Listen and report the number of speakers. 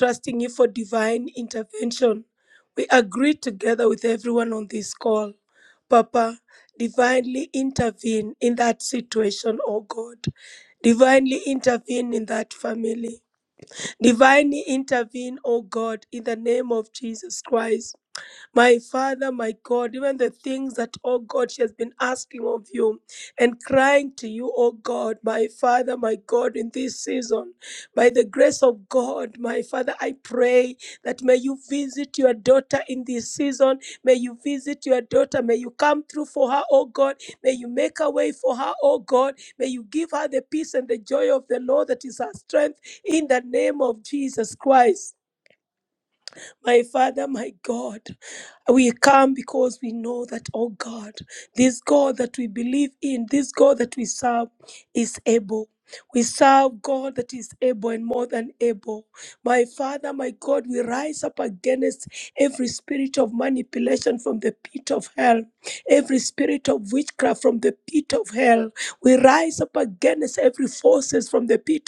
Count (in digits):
1